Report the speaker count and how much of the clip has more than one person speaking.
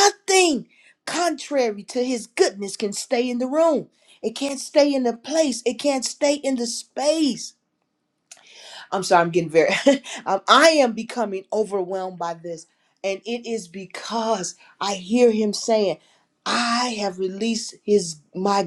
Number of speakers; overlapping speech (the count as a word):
one, no overlap